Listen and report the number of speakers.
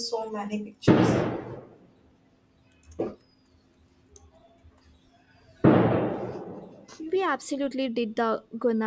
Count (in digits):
2